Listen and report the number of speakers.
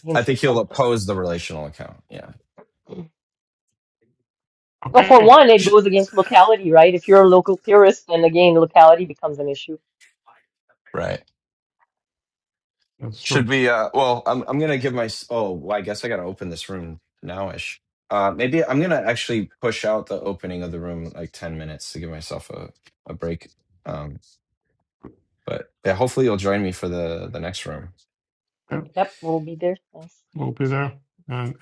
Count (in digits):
3